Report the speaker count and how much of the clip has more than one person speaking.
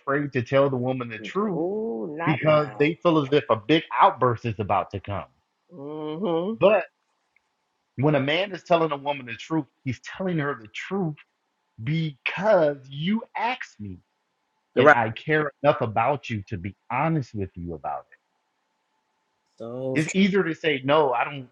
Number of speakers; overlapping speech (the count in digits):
3, about 5%